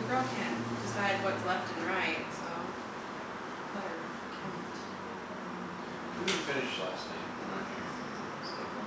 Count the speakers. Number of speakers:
two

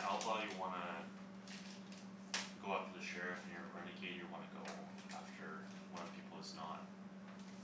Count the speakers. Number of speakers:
one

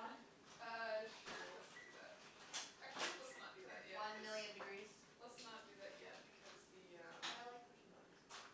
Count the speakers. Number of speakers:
two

